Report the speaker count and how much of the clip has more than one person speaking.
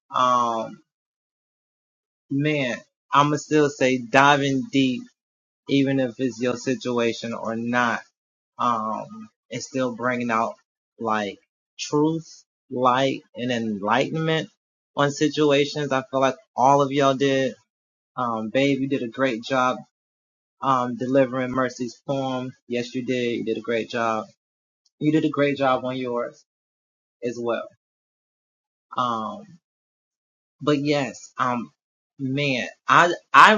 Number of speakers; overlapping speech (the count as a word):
one, no overlap